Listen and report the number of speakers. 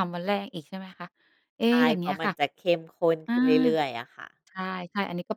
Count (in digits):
2